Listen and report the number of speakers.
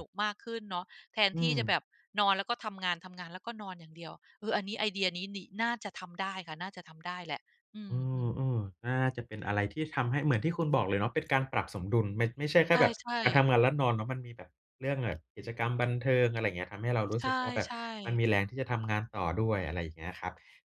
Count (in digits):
2